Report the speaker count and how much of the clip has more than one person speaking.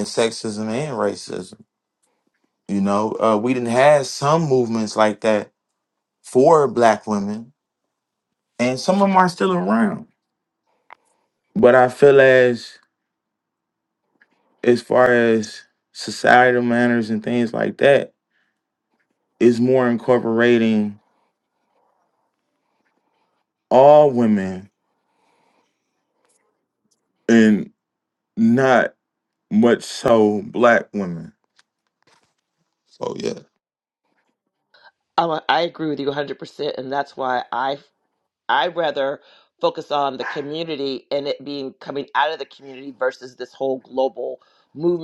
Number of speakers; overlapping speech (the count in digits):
2, no overlap